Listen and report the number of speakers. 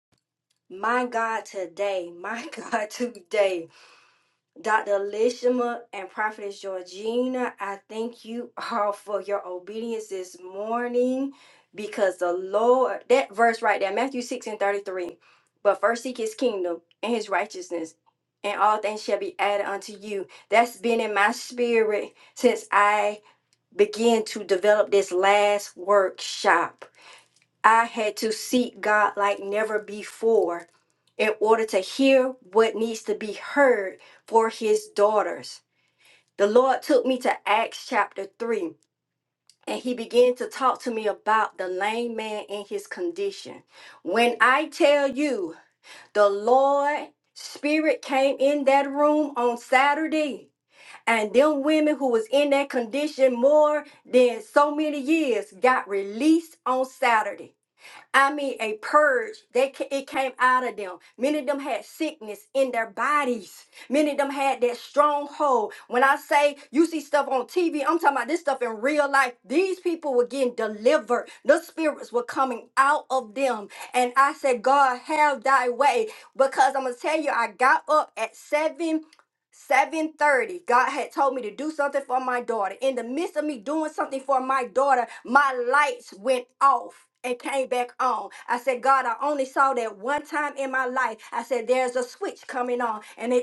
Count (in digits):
1